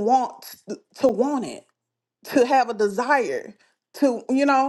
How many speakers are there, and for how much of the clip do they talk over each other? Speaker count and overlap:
one, no overlap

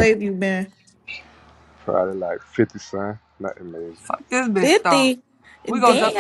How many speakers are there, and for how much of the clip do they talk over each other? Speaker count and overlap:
three, about 16%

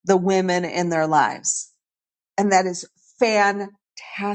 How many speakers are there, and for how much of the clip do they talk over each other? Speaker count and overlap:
one, no overlap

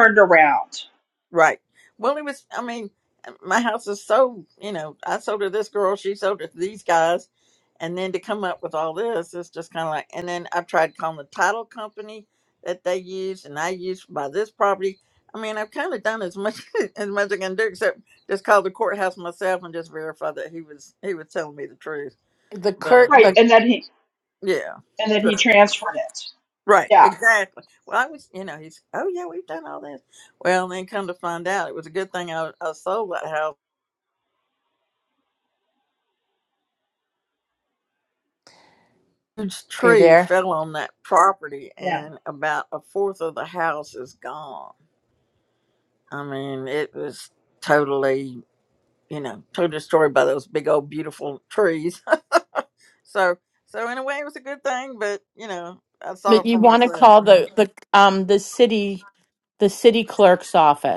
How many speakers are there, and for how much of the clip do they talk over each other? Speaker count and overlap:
three, about 5%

